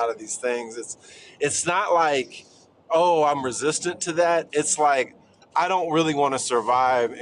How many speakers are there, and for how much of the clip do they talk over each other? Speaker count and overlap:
one, no overlap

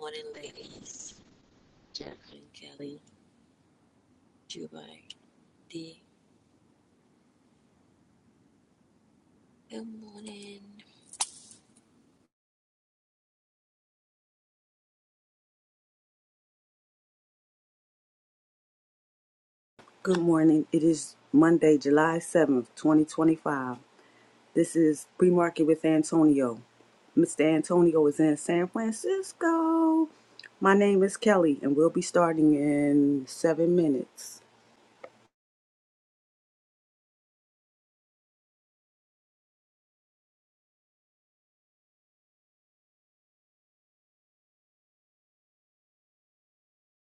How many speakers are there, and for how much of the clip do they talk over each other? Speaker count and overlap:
two, no overlap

